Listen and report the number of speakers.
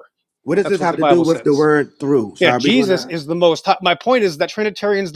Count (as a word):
two